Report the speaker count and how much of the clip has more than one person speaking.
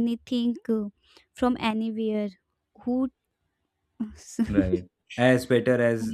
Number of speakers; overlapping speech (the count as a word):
two, no overlap